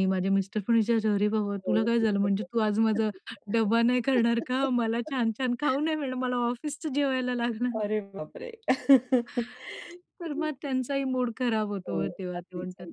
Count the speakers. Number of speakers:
2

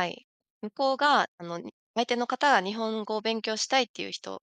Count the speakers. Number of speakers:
1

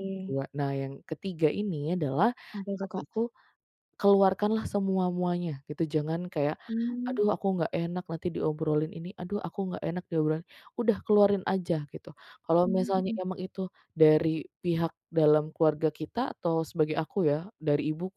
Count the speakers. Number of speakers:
2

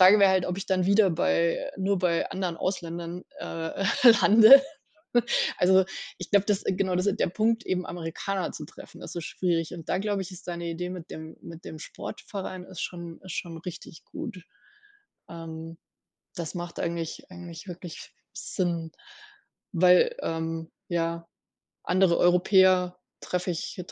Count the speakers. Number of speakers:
1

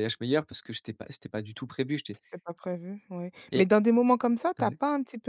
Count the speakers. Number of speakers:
2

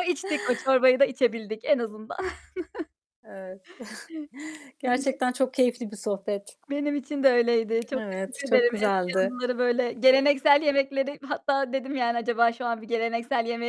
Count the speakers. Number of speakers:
2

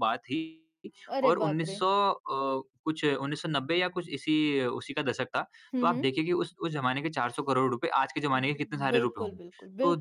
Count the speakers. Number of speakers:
2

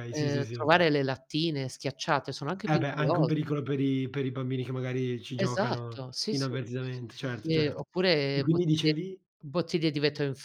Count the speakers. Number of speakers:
2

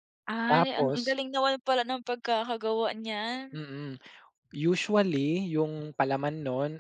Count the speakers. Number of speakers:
2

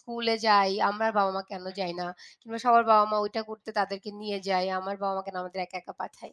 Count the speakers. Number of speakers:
1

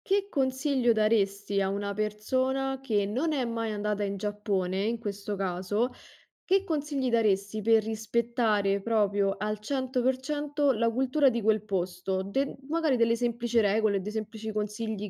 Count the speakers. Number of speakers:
1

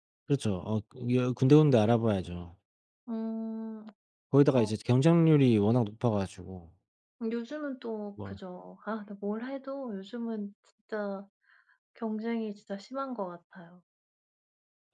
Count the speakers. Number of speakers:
2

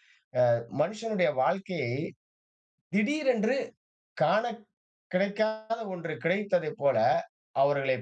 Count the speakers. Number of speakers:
1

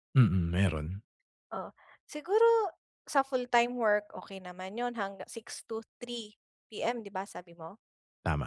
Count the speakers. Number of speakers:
2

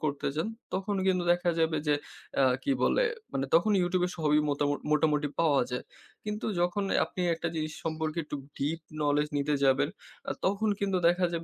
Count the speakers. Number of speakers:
1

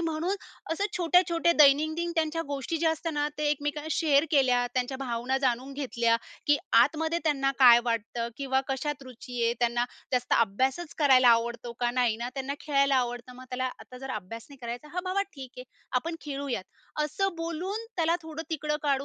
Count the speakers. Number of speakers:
1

